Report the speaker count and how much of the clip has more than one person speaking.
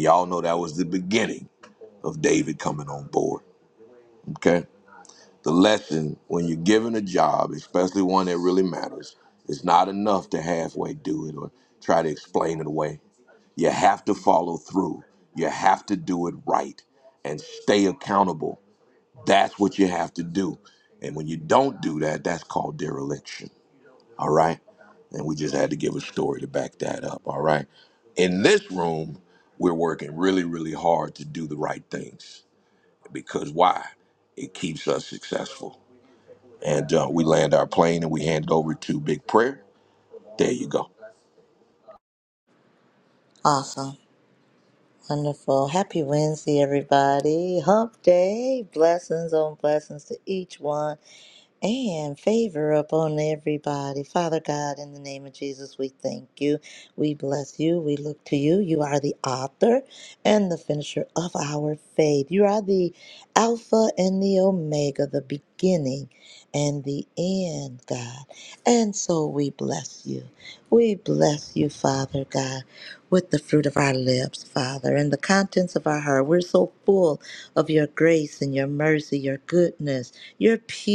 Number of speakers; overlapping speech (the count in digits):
2, no overlap